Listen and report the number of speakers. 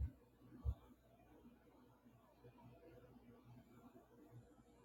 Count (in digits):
0